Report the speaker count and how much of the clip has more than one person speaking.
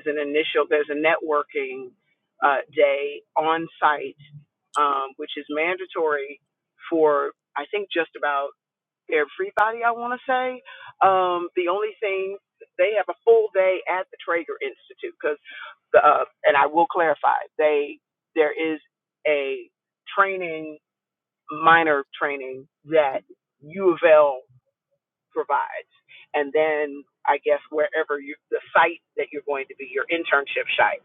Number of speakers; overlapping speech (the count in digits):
1, no overlap